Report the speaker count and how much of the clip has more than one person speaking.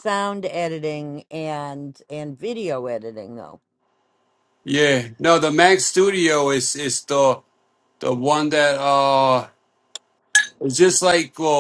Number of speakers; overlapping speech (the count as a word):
two, no overlap